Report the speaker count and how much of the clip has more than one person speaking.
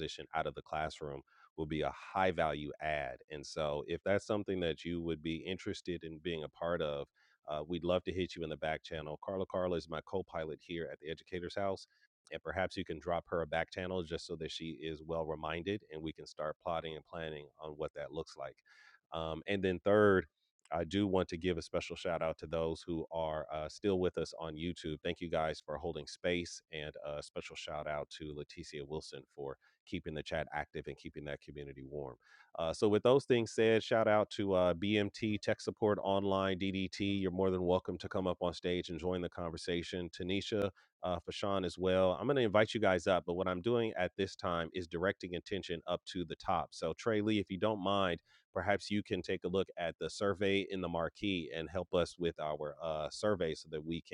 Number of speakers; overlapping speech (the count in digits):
1, no overlap